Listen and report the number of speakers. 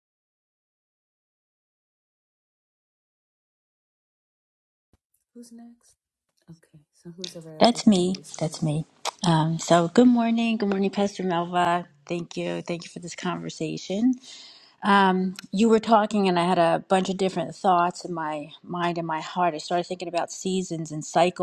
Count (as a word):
two